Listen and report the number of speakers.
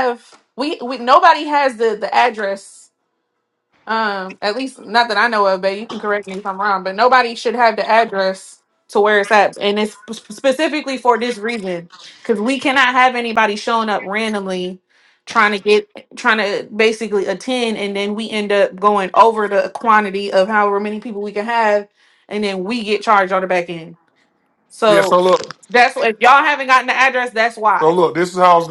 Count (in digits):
2